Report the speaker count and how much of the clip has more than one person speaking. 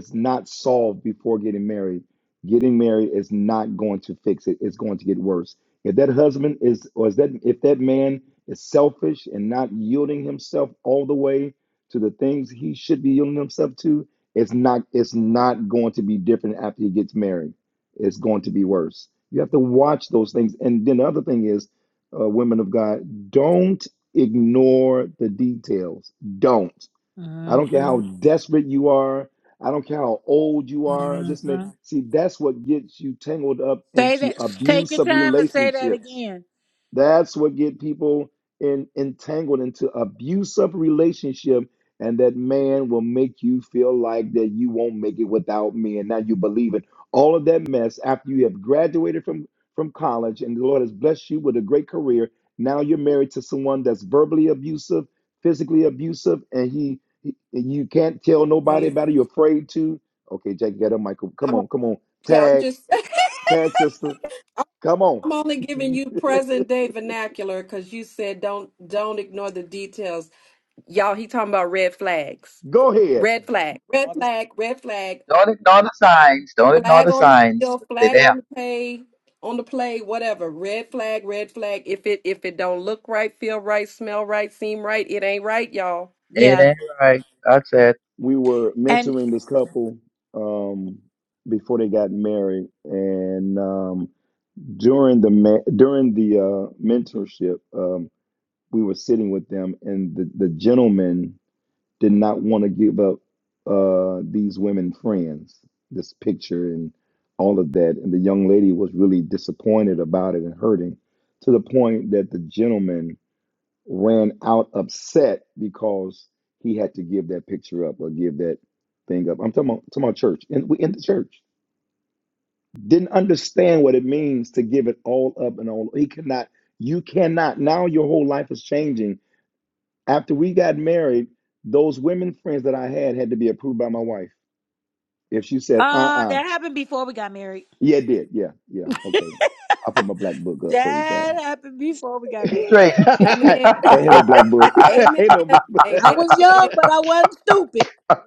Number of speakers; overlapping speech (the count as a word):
four, about 5%